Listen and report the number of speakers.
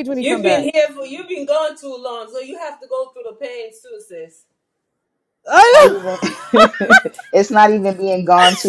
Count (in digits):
3